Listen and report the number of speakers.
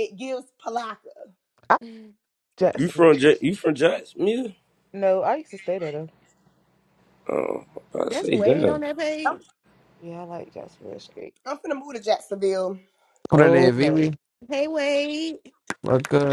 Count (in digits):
5